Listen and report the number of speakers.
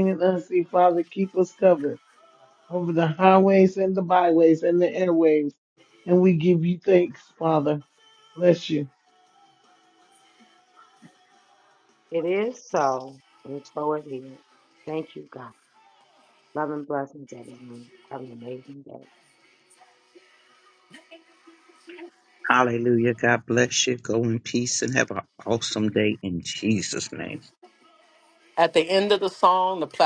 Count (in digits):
4